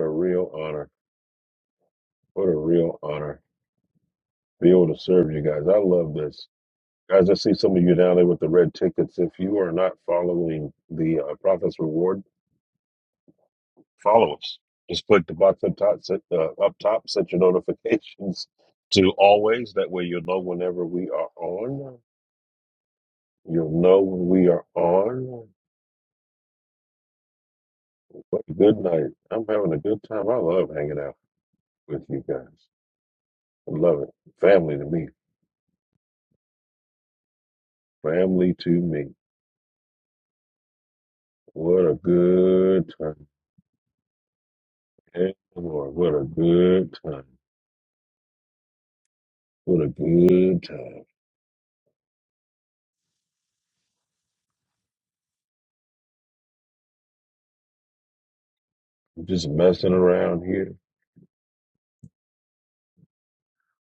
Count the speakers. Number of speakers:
1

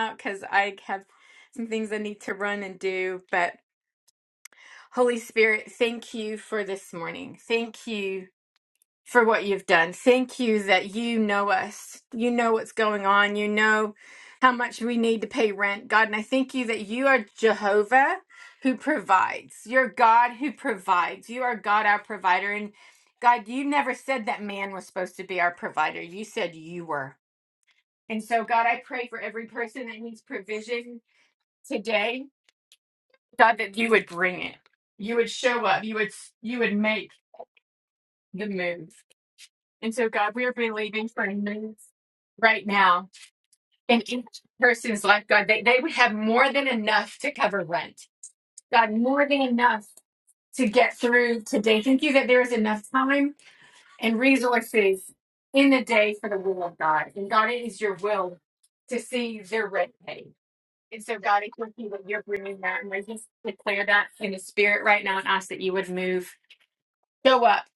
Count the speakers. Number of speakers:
1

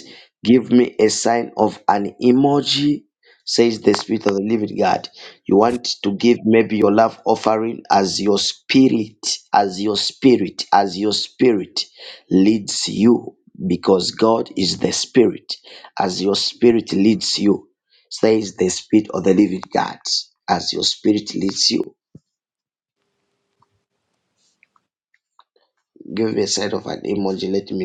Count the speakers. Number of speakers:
1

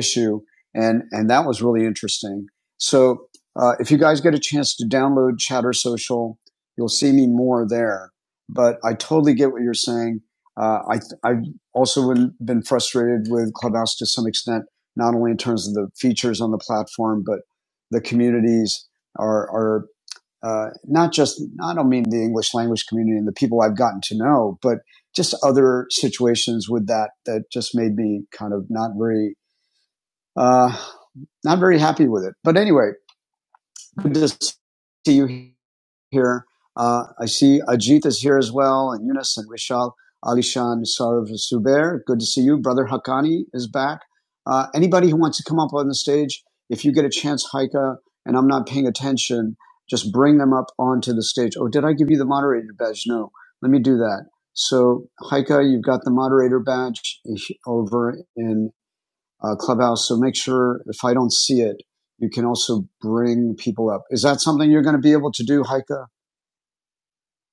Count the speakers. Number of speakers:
1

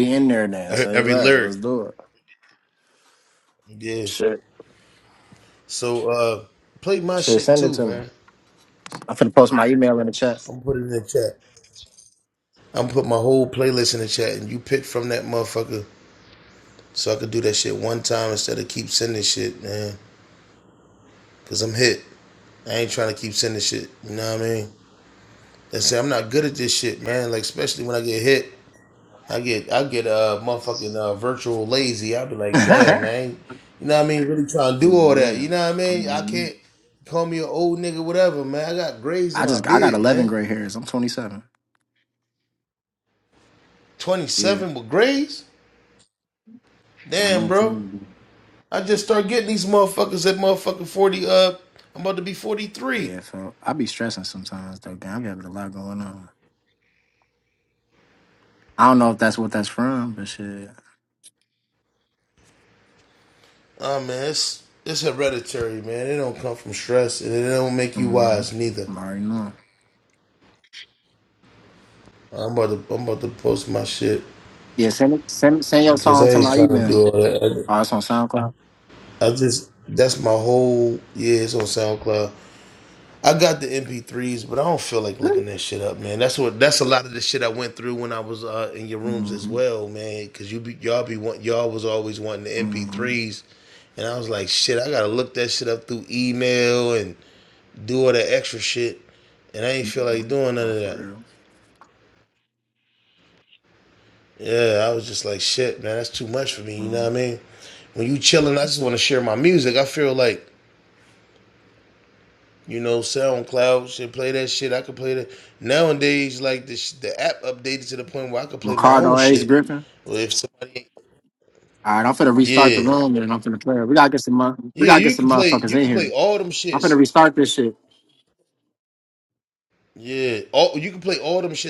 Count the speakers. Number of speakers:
2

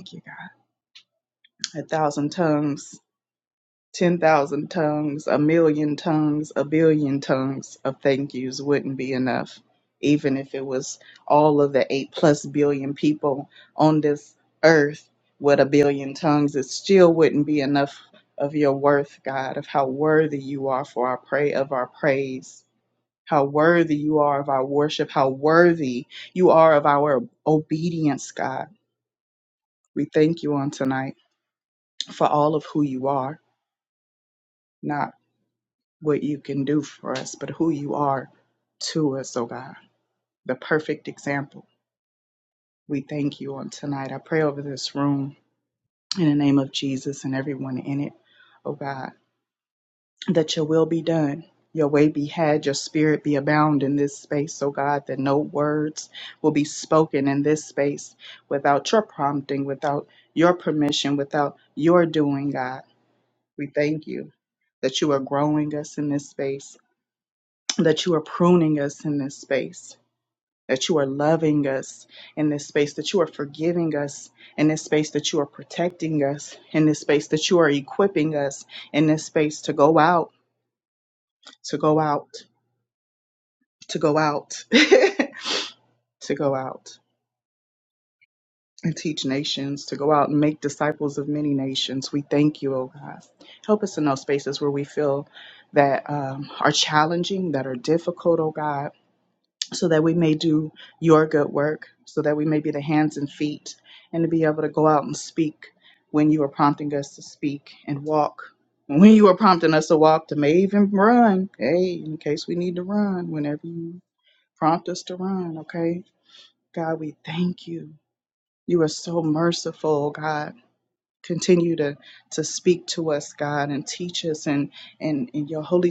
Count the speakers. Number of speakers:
1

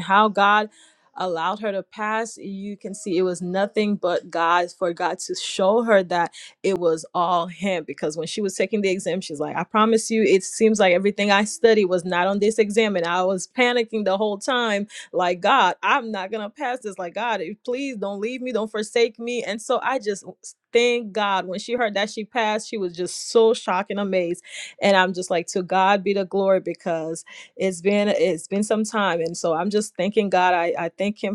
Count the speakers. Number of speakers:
1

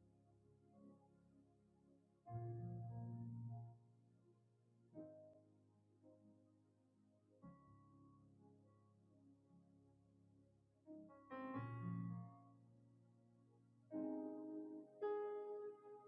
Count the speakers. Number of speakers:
0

